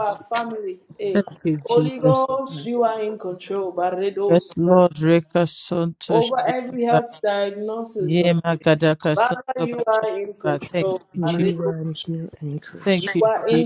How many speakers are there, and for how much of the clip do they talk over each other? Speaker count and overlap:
3, about 37%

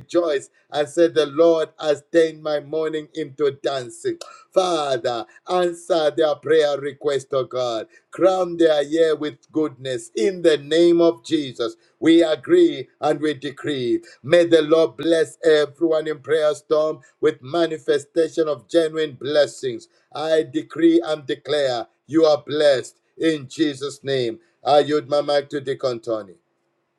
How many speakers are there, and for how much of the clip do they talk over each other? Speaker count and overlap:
1, no overlap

